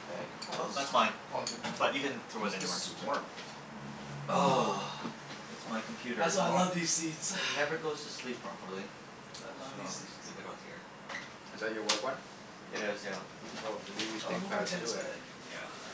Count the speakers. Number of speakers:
four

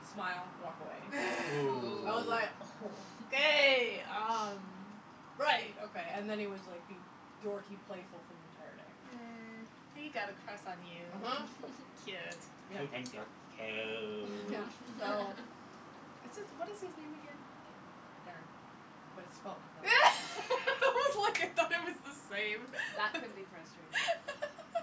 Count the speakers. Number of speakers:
four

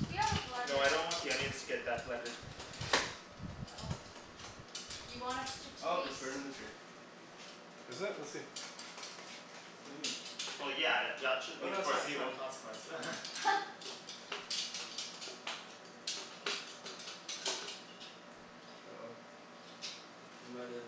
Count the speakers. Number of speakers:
four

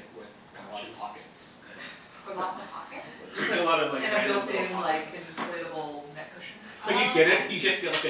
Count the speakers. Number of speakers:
four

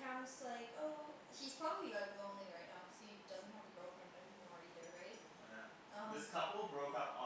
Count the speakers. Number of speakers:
two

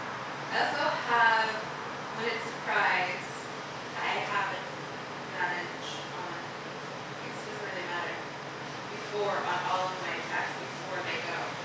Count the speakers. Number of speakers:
one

